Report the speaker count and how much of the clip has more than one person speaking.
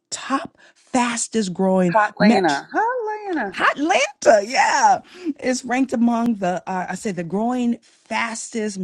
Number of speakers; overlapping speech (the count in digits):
2, about 8%